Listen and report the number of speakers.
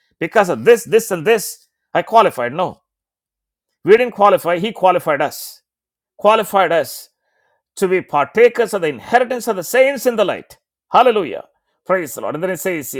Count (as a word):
one